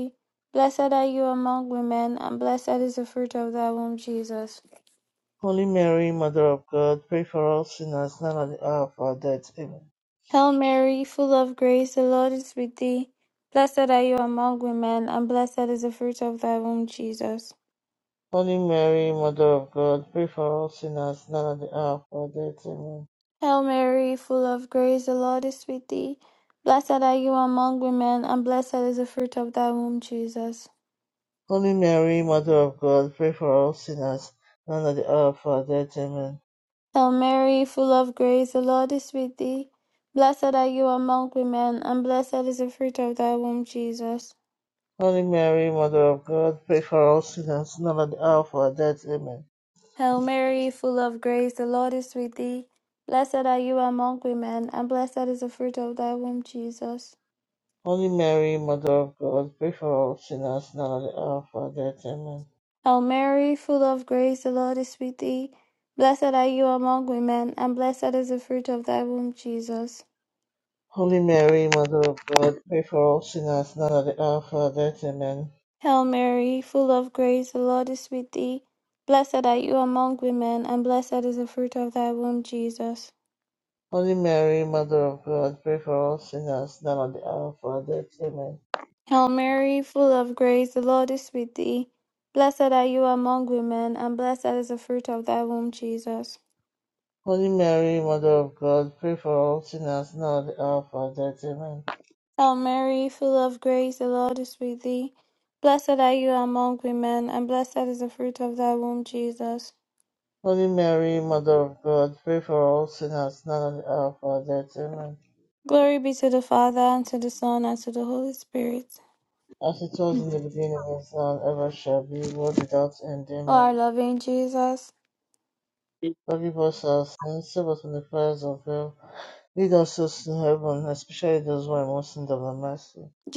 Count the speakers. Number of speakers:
2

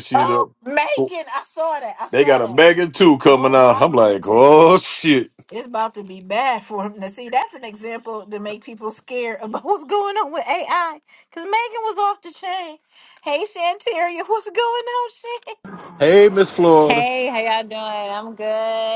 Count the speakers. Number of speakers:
3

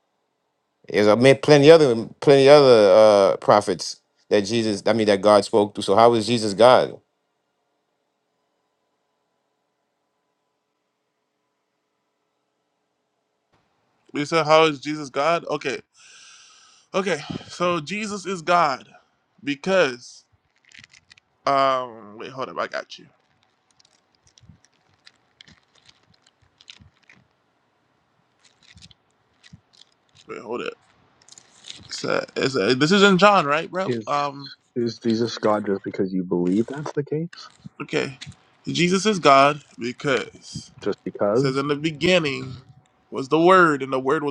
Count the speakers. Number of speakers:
3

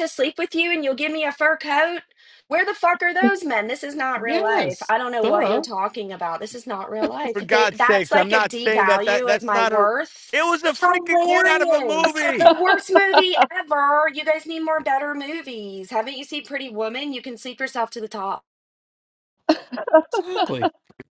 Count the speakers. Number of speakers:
3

